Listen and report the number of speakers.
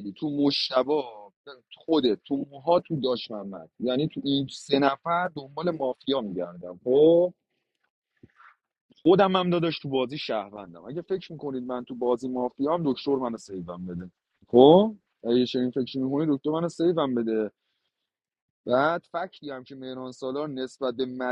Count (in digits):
1